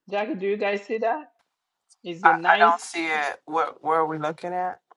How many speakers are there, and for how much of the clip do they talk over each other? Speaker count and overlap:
2, about 11%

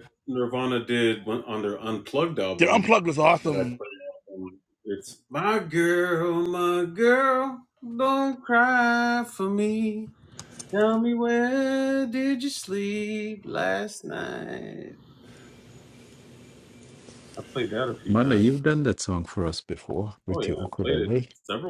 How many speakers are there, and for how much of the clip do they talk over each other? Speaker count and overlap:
3, about 9%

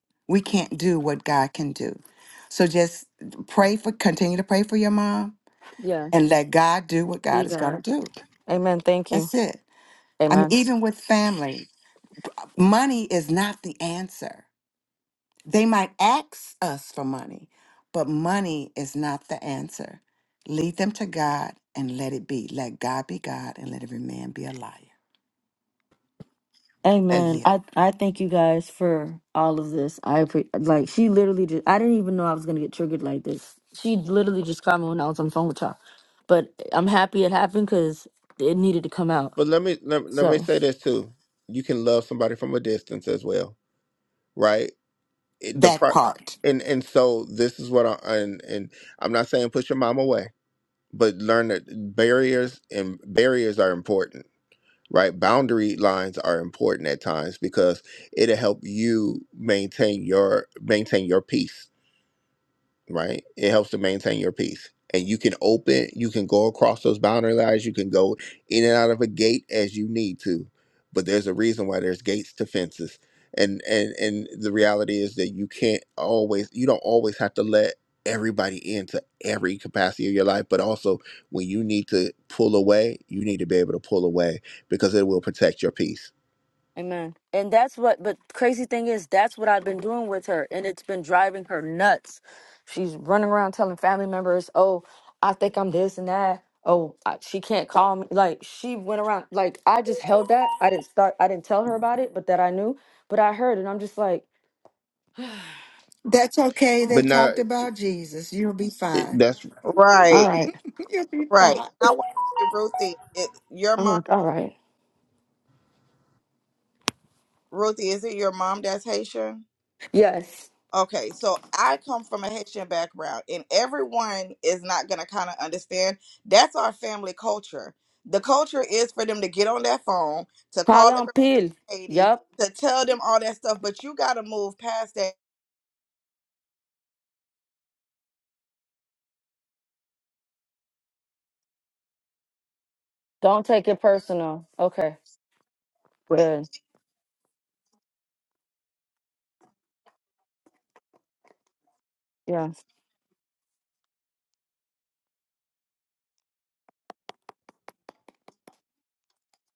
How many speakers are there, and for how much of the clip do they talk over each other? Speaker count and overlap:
4, about 3%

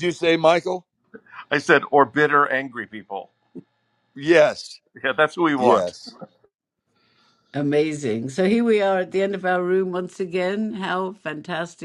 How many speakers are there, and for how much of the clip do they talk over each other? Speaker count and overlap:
3, about 2%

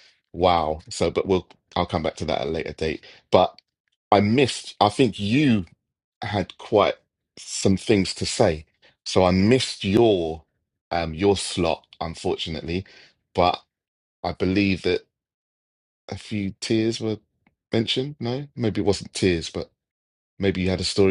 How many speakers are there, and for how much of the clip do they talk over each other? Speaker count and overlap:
1, no overlap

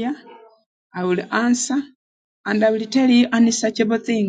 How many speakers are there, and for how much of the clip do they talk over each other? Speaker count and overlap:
1, no overlap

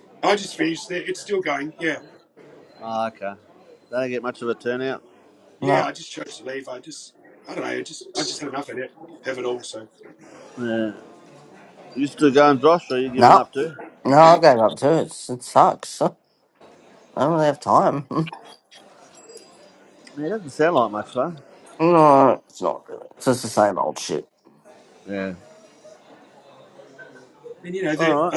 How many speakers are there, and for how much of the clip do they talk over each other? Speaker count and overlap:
3, about 3%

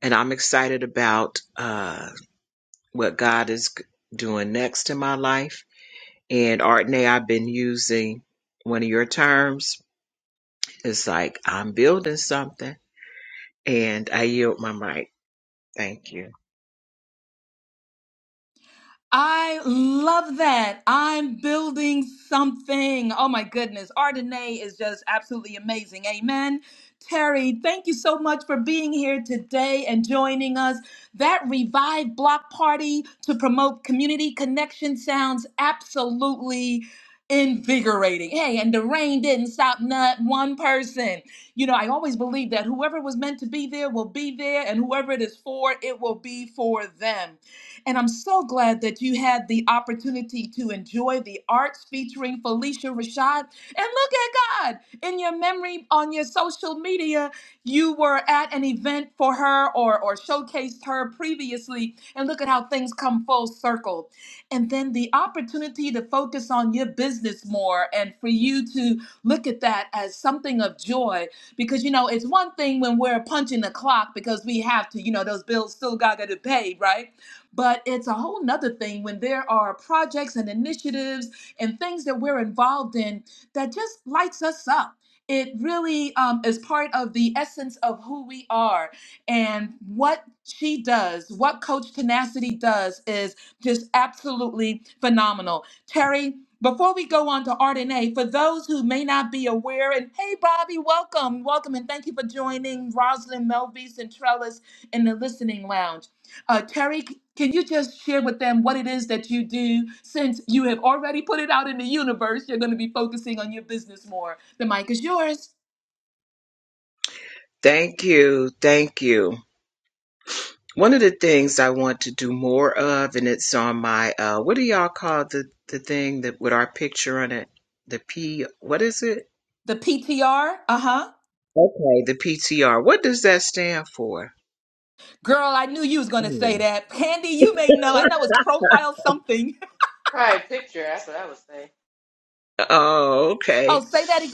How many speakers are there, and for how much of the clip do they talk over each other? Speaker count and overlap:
3, under 1%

